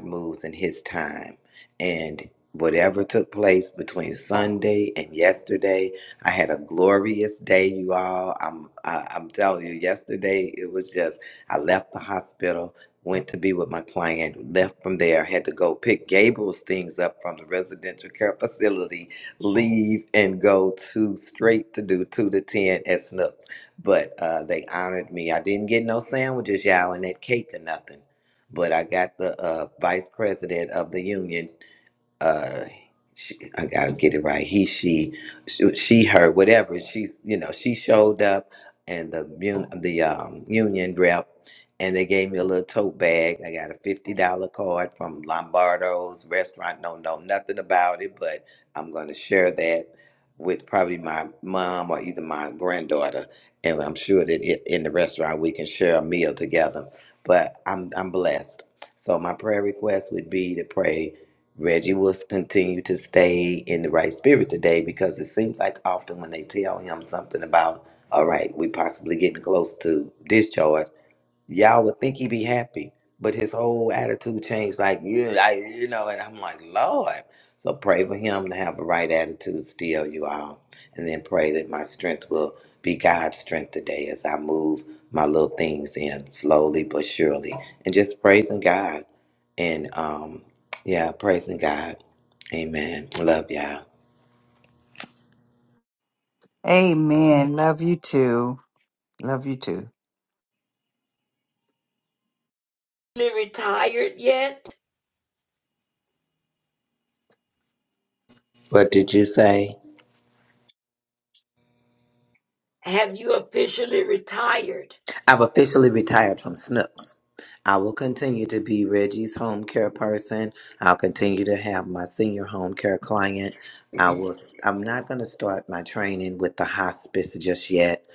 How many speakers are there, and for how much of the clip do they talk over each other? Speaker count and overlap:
3, no overlap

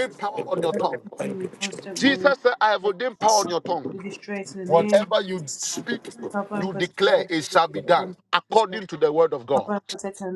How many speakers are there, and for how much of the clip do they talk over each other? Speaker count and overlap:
2, about 31%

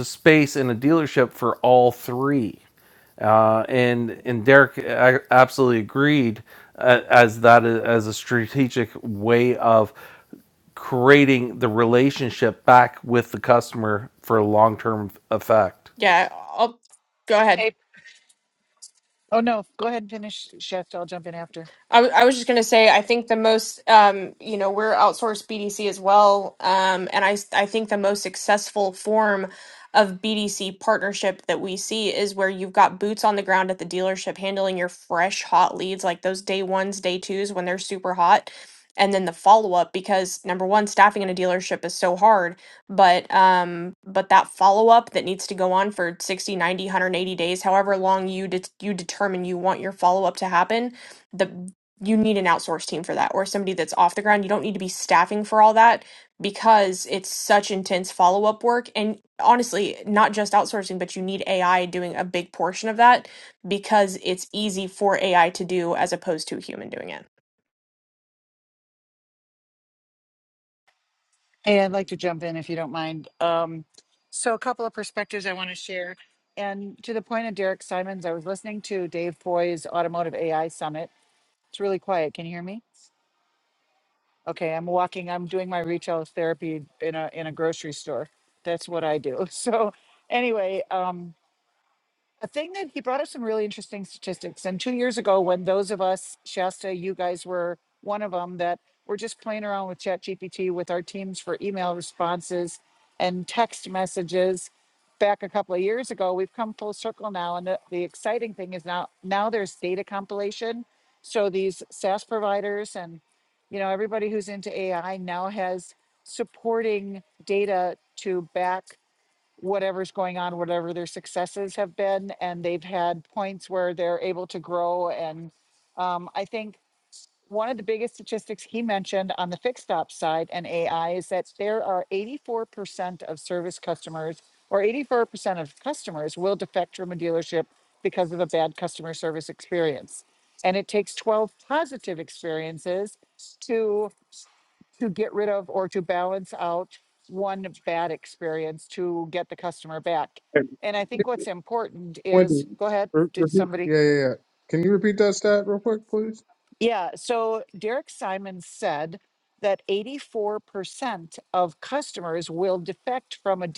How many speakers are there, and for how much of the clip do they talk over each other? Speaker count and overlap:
4, about 1%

